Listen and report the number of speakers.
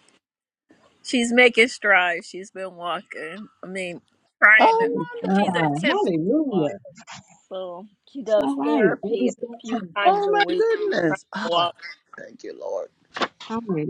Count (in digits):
3